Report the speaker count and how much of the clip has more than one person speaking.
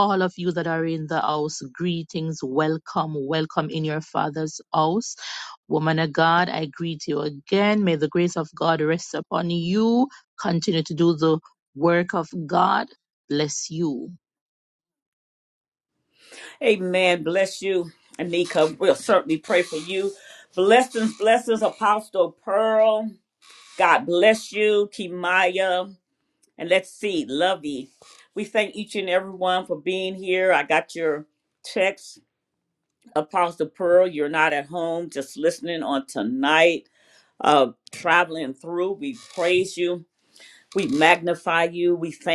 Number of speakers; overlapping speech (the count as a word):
two, no overlap